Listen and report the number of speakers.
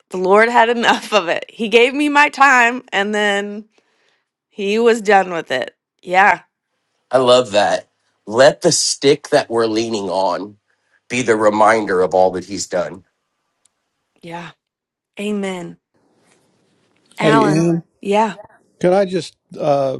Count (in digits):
3